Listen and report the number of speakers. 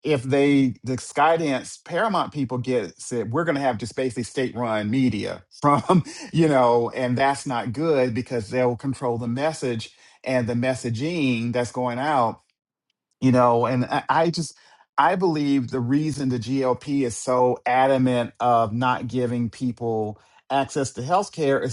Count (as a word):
one